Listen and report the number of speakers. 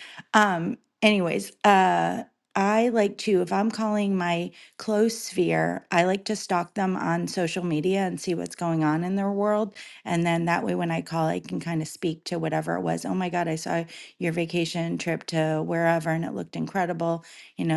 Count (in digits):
1